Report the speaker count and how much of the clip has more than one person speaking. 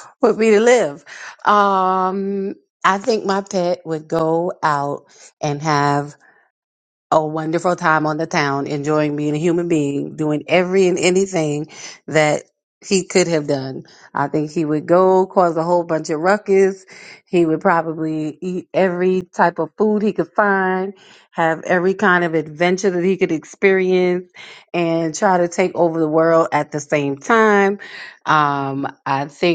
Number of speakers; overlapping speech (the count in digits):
1, no overlap